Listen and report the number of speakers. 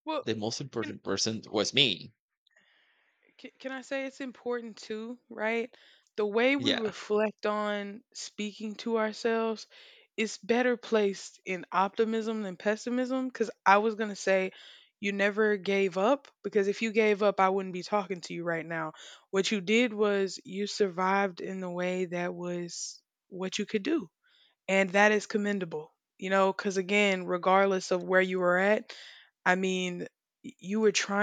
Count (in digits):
2